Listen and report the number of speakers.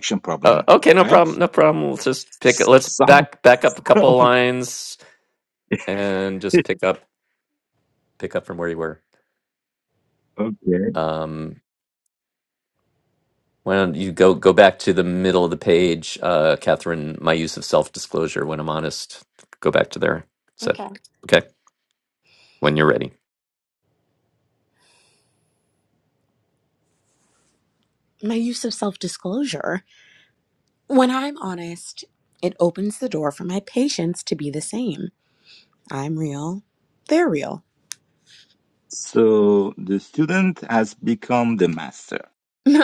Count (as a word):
three